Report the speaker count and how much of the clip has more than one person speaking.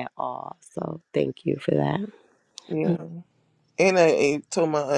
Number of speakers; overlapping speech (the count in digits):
2, about 2%